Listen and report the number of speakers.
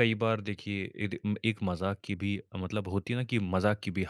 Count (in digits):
1